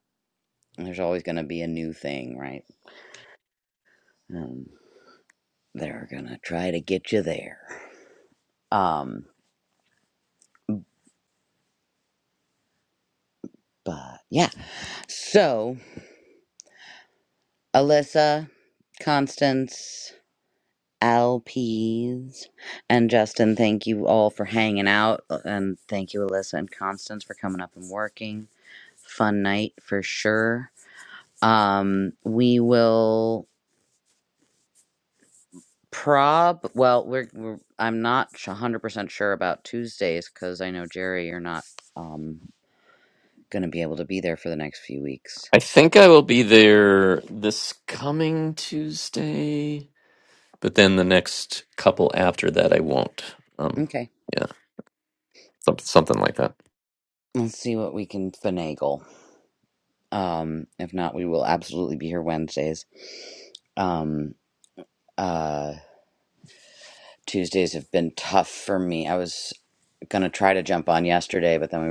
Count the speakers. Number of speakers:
2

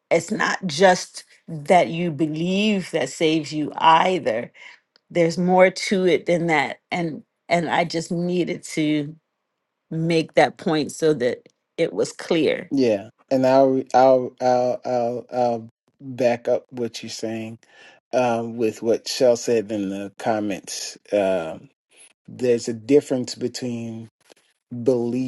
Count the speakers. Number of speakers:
2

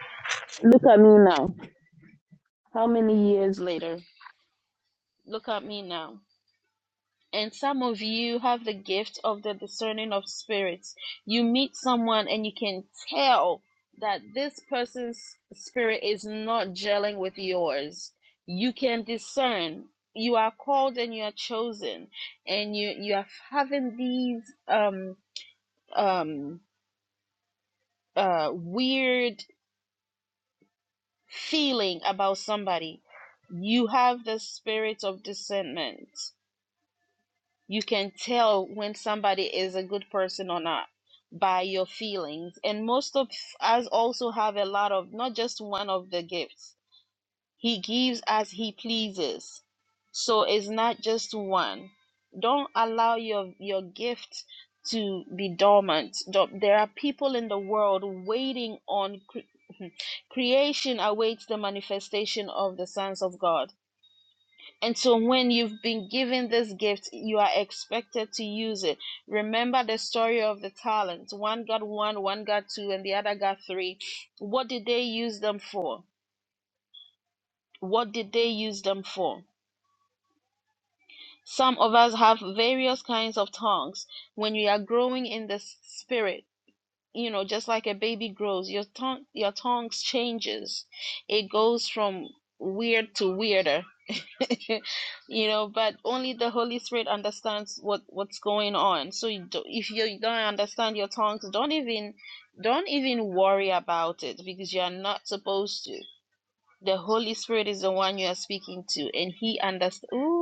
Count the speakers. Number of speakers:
1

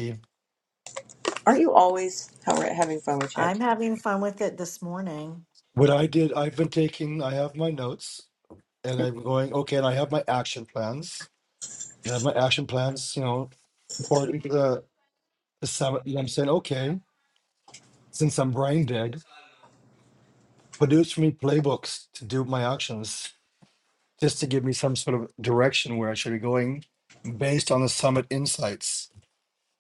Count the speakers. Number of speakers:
3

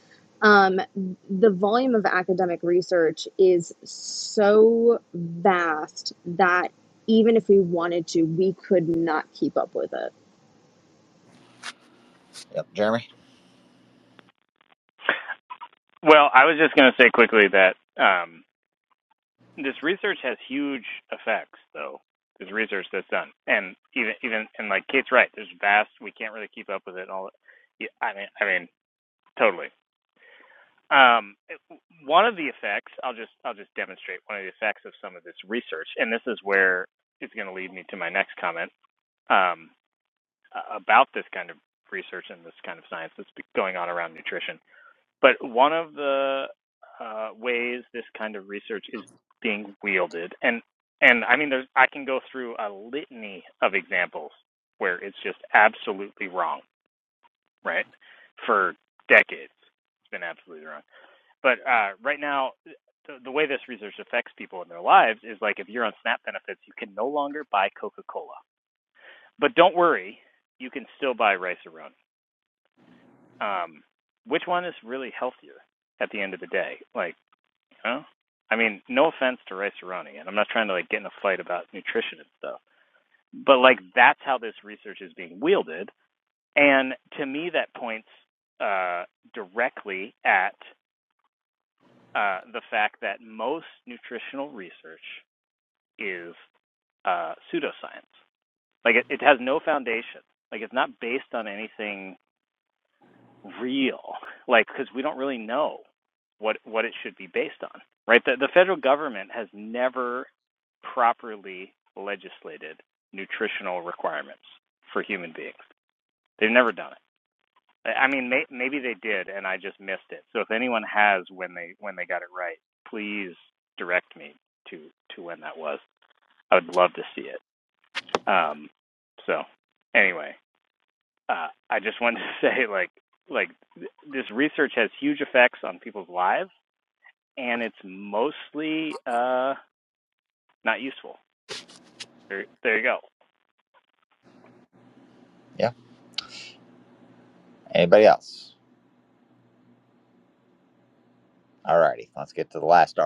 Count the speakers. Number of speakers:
3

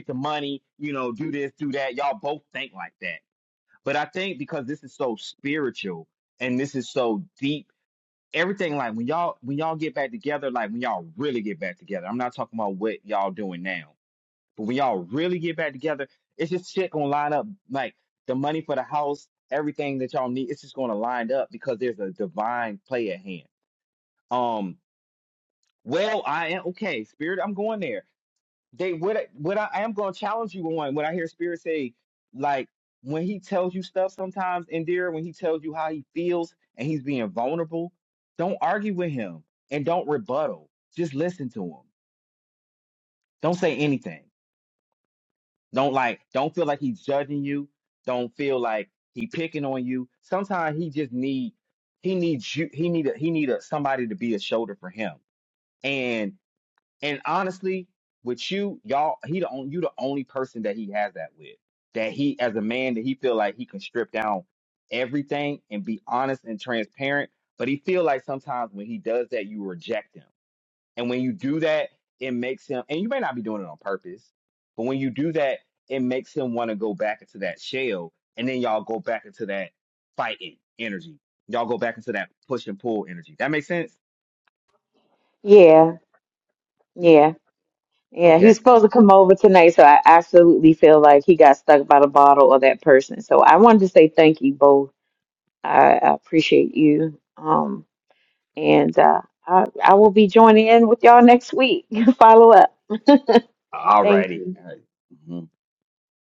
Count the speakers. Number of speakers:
2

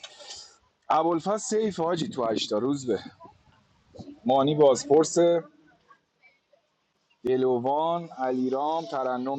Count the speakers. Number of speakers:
1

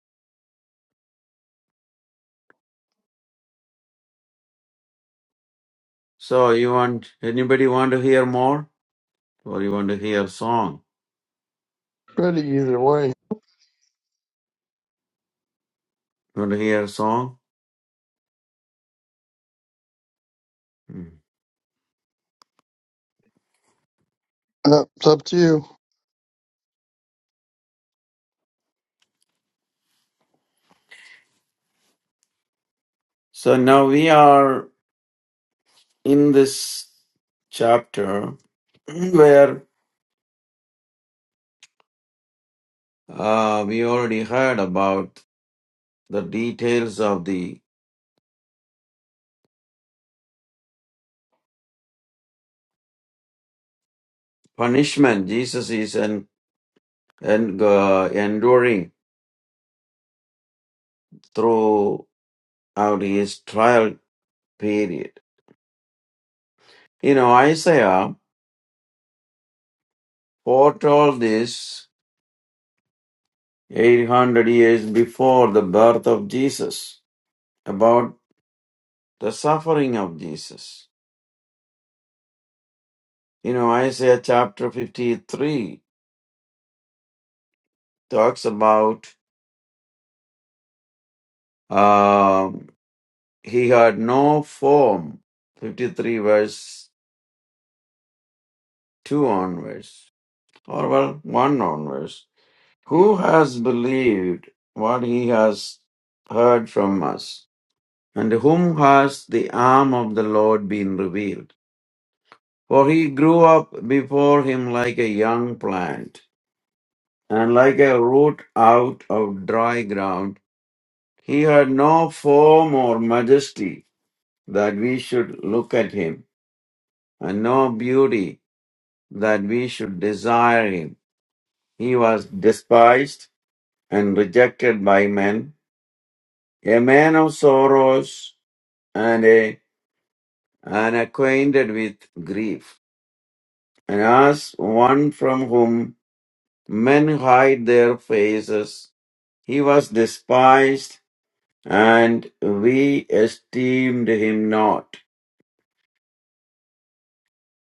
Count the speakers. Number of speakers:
2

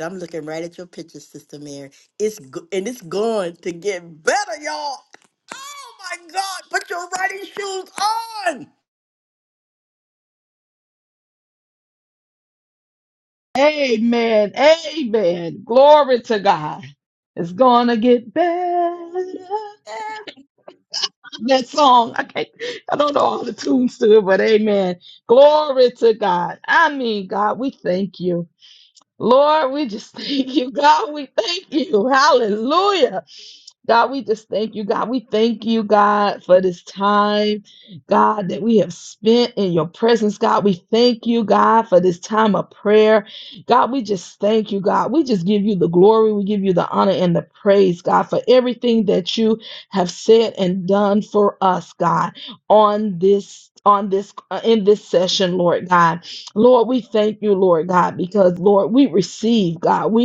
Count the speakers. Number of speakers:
2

